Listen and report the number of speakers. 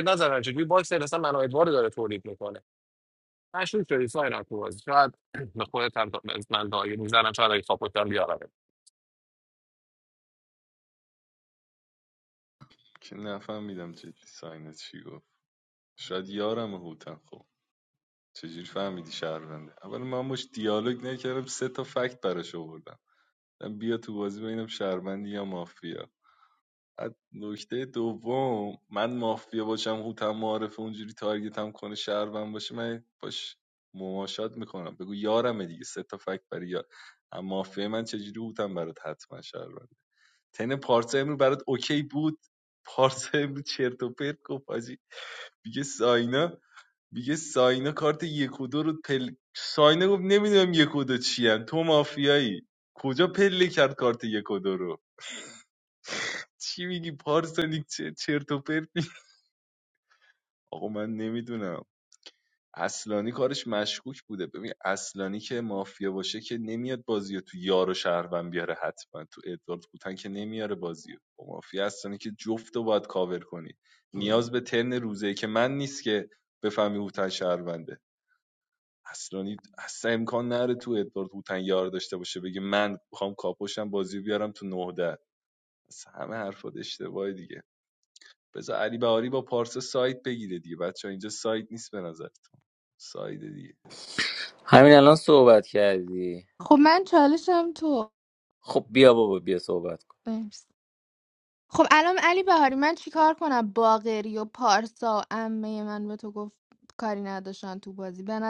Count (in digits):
4